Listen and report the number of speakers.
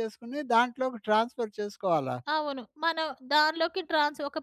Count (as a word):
two